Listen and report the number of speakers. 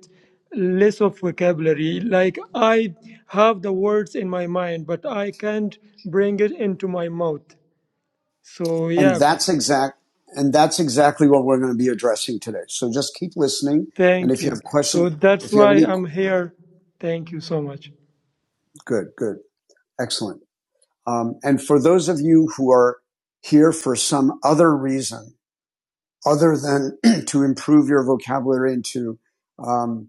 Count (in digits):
2